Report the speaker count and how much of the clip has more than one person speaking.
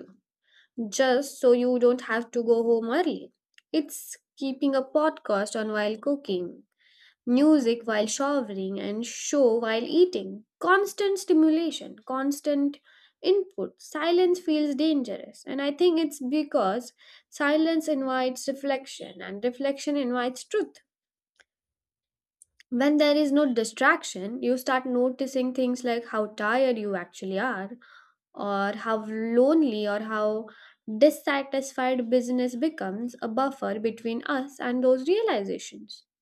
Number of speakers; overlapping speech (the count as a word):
one, no overlap